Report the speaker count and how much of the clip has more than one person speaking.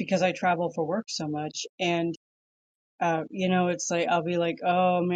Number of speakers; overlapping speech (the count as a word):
one, no overlap